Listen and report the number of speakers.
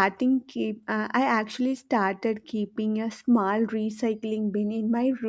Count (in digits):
1